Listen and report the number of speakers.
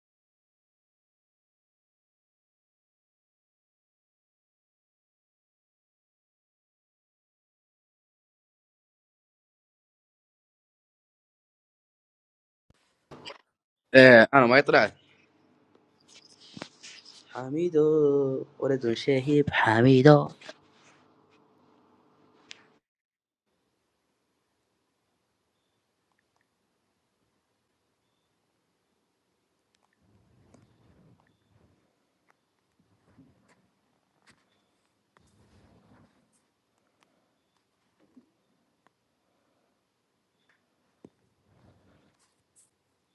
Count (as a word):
one